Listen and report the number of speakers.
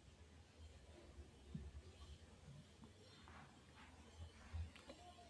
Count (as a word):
zero